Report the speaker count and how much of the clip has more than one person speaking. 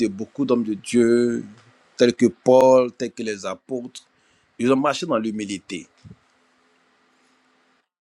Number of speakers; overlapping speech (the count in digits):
1, no overlap